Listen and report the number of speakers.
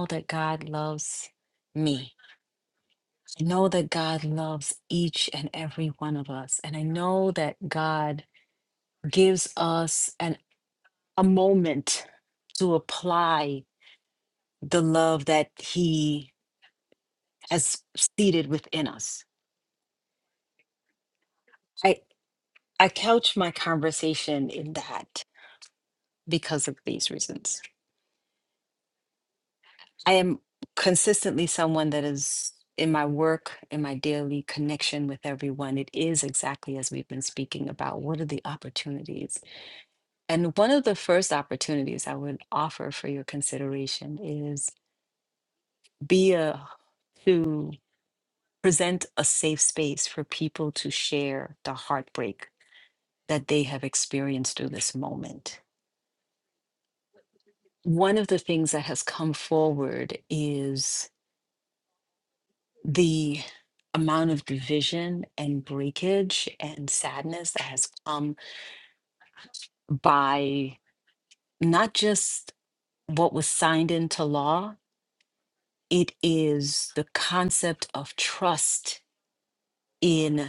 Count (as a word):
one